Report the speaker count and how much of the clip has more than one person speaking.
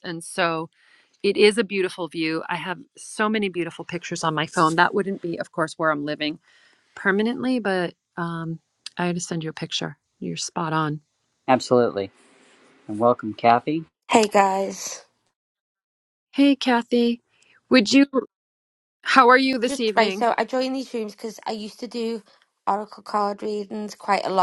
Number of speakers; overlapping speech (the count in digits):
3, about 2%